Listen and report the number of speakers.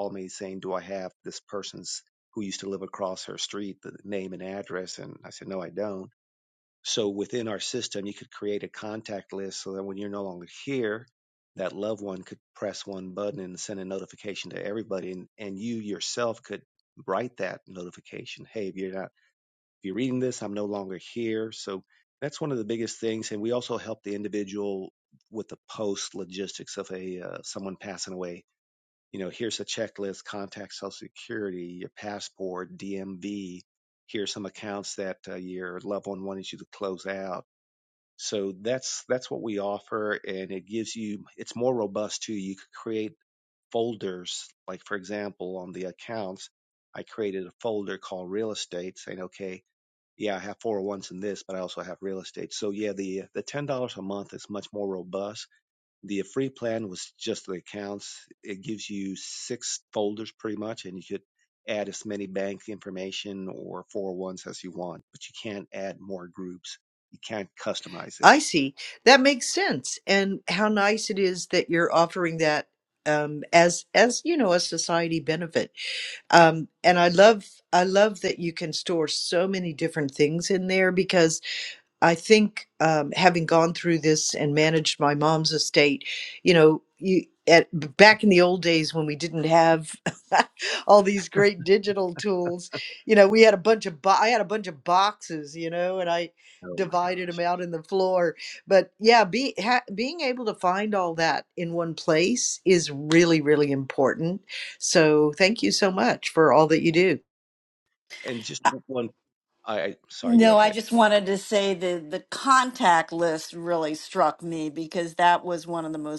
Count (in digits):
3